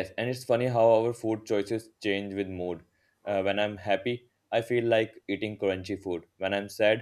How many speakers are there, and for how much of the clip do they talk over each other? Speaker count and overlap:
one, no overlap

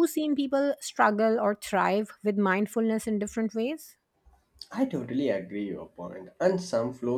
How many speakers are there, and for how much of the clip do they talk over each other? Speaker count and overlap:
two, no overlap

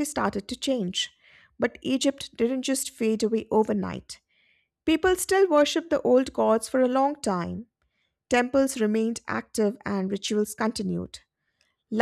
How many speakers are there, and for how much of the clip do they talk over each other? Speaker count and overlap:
one, no overlap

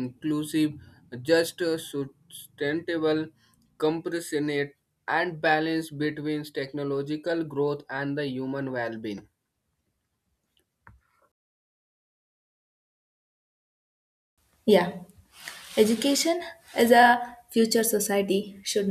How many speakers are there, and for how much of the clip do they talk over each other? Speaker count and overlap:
two, no overlap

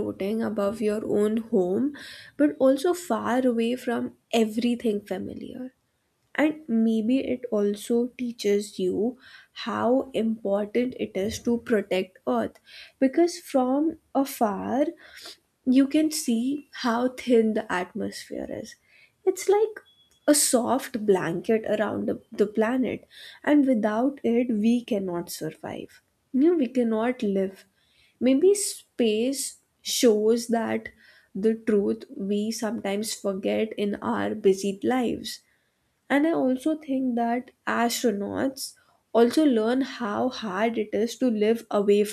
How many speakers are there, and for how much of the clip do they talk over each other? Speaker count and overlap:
one, no overlap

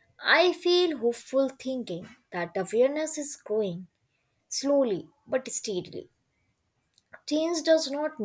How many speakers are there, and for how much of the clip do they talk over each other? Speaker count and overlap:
one, no overlap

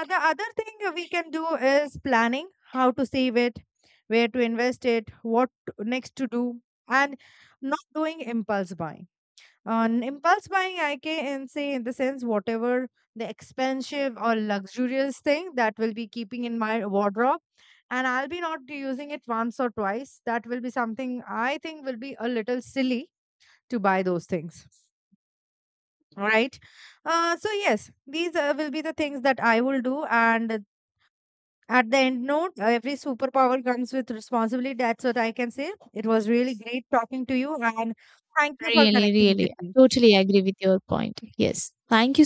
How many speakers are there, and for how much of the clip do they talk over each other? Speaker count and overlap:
two, about 3%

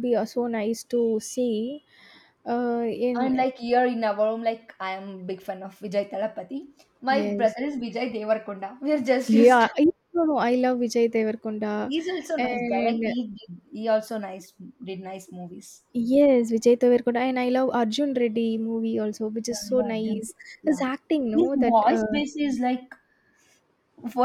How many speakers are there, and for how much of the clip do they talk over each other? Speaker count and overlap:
two, about 15%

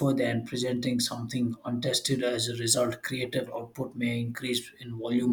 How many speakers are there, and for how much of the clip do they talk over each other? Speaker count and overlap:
one, no overlap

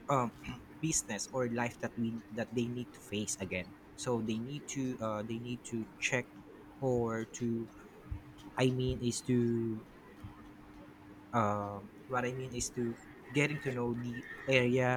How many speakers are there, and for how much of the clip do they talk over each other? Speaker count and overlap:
one, no overlap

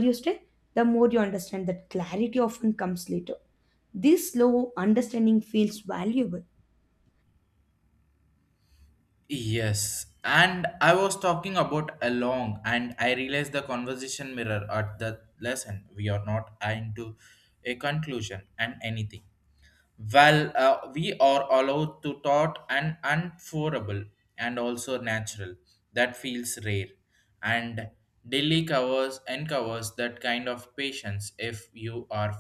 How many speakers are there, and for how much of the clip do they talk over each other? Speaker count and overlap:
two, no overlap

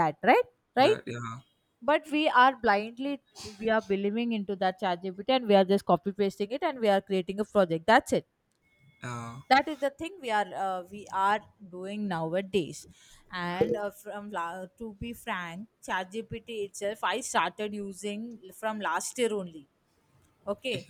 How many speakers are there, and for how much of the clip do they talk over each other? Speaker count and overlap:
two, about 1%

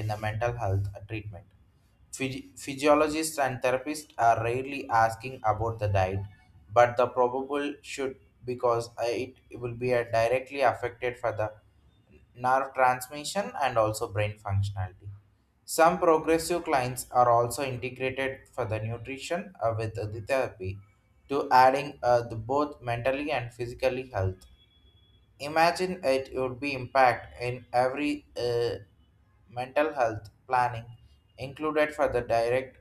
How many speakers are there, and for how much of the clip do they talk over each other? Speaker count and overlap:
one, no overlap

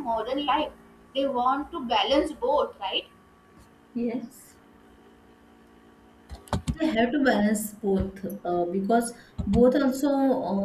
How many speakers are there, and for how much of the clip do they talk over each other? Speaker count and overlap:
two, no overlap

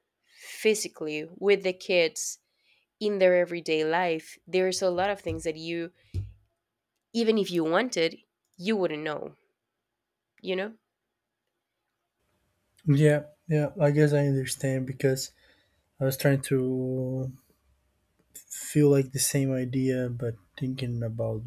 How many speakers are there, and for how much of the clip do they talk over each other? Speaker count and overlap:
two, no overlap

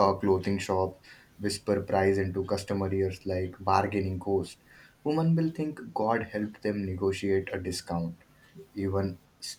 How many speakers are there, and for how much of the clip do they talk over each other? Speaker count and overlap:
one, no overlap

